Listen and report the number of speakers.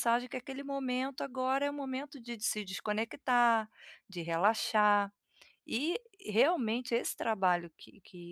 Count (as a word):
one